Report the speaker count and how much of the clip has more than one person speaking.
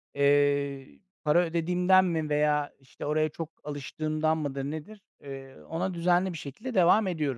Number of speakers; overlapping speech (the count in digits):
1, no overlap